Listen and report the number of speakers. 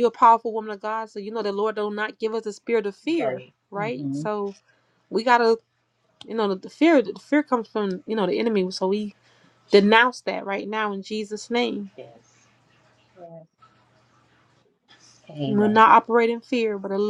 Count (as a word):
two